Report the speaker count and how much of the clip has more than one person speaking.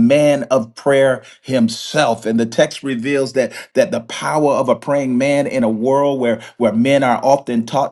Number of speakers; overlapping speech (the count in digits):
1, no overlap